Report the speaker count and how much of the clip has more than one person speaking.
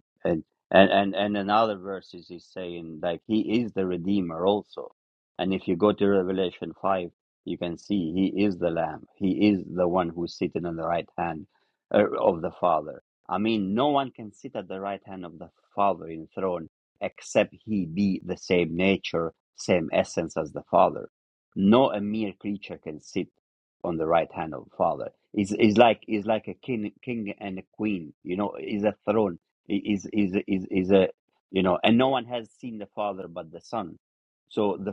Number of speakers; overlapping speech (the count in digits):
1, no overlap